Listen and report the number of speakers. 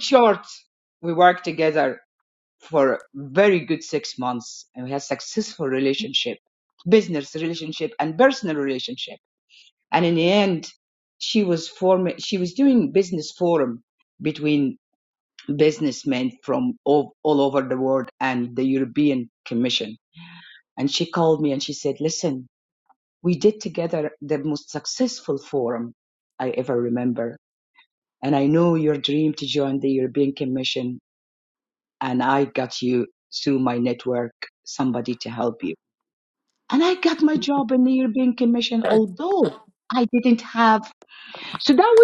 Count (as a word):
one